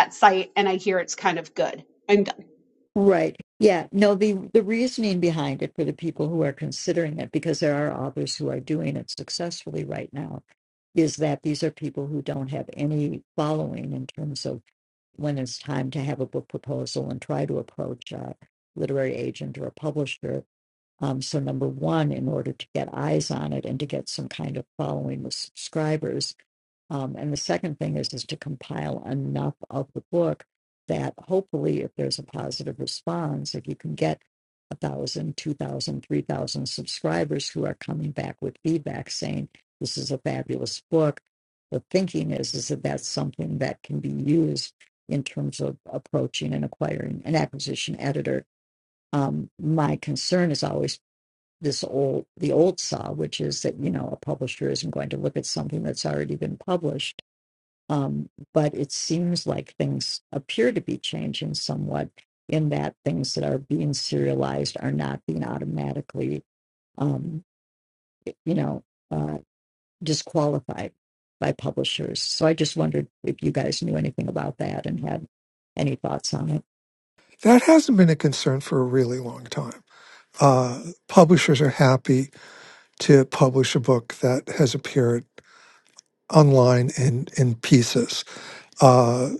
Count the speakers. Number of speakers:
three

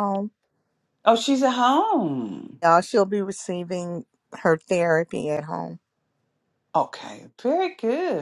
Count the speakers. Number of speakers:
two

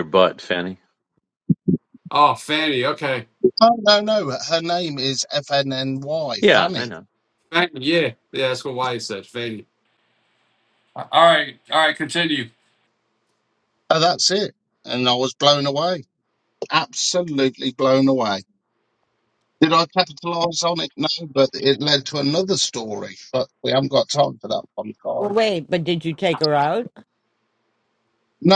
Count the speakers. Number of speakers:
four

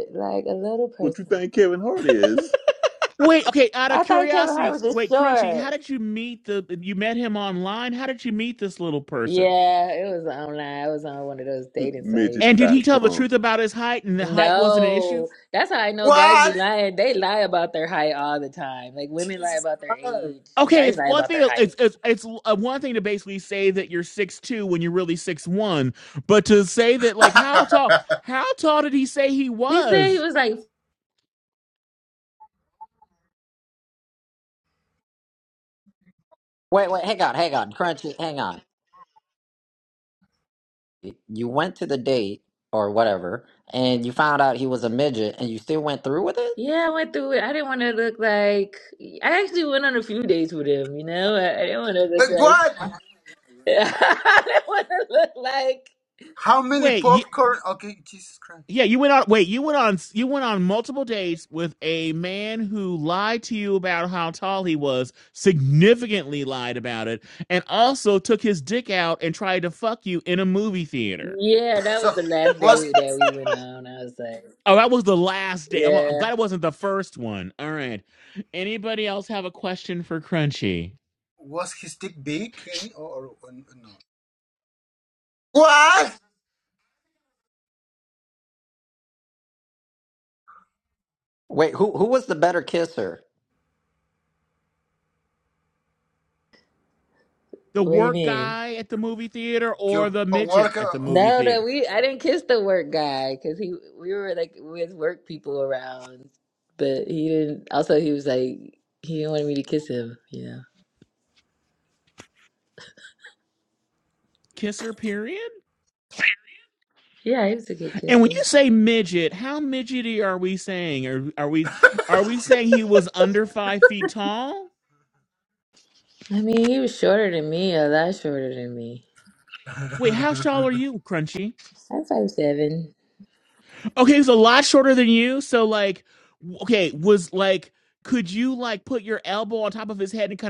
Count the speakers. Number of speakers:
five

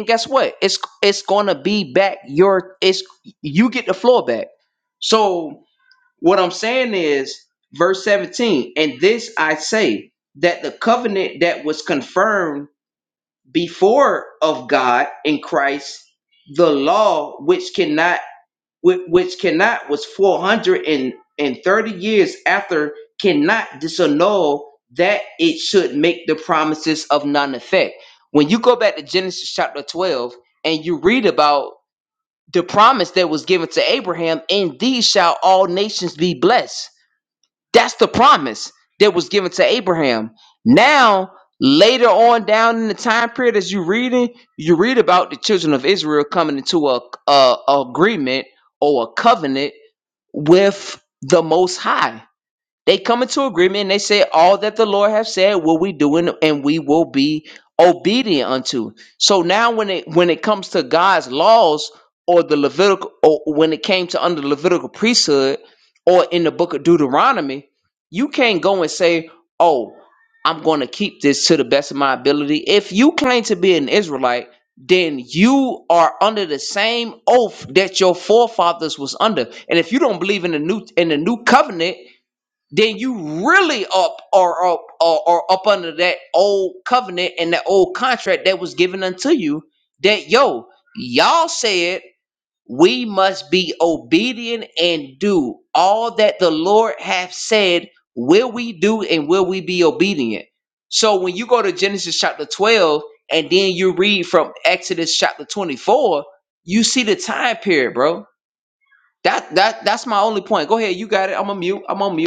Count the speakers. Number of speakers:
one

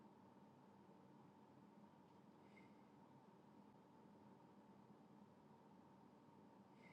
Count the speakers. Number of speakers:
zero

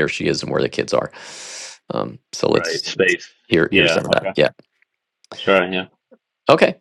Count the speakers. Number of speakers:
two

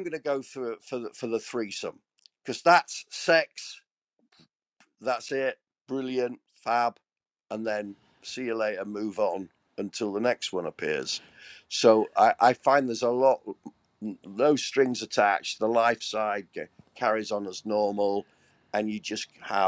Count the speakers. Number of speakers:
one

